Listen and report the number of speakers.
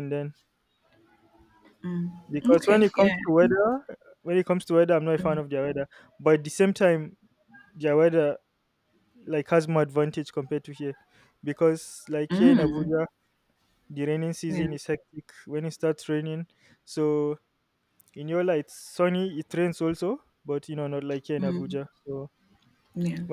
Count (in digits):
2